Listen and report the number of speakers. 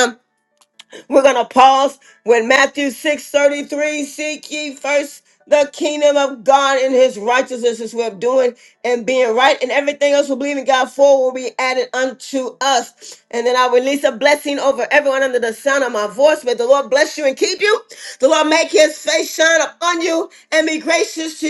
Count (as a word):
one